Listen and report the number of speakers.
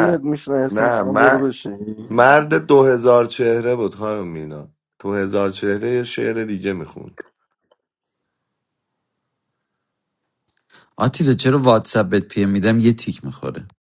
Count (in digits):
3